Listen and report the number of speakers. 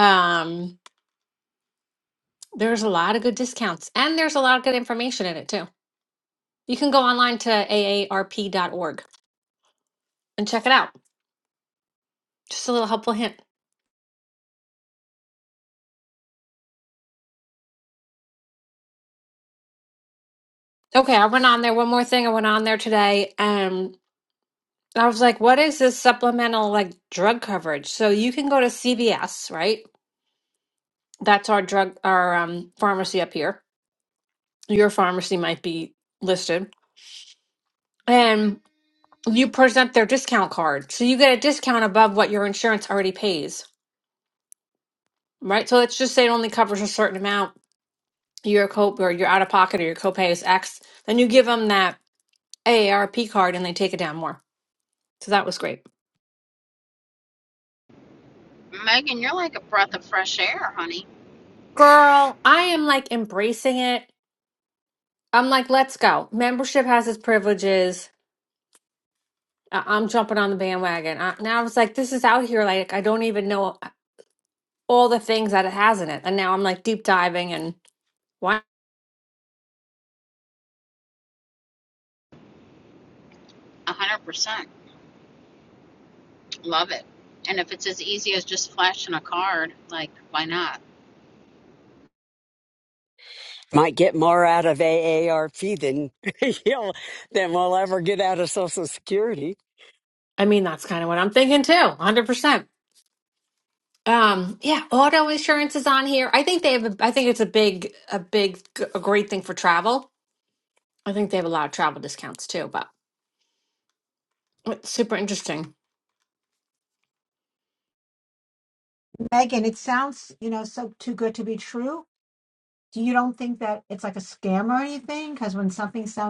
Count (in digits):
4